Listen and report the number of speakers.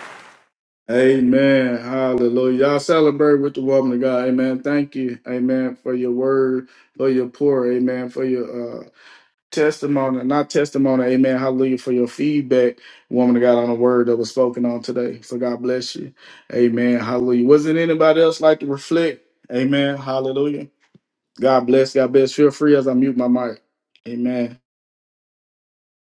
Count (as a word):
one